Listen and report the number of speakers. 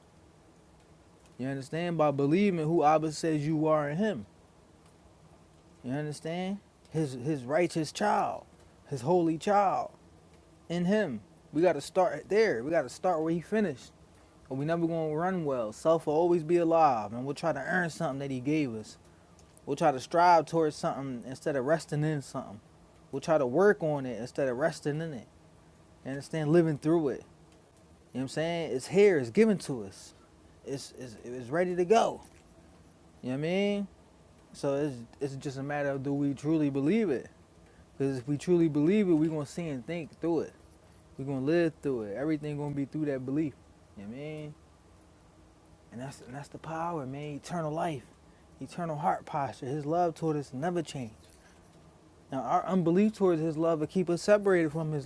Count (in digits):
1